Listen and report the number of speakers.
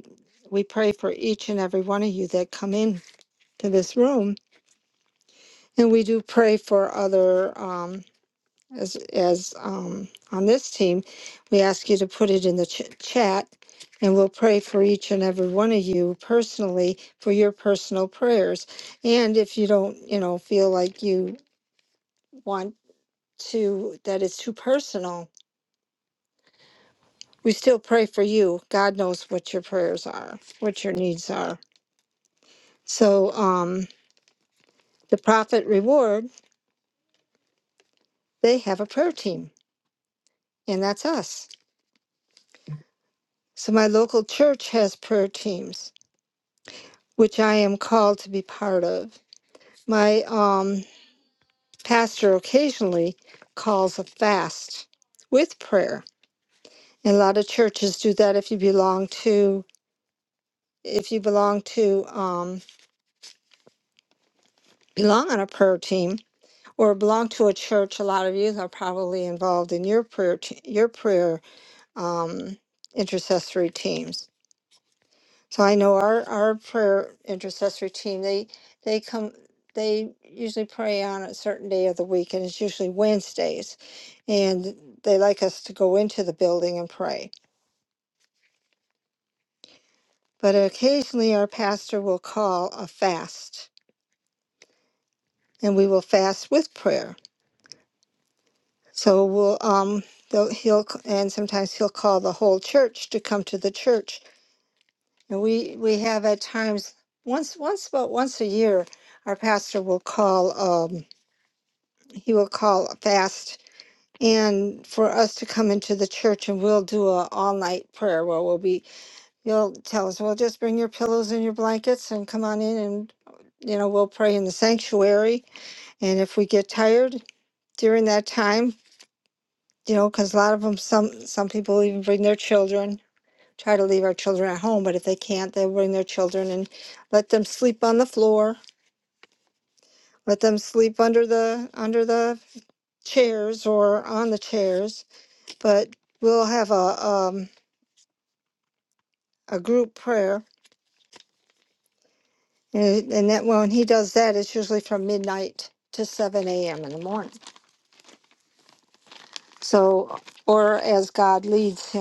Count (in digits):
1